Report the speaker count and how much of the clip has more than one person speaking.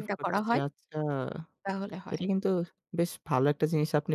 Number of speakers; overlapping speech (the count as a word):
two, about 18%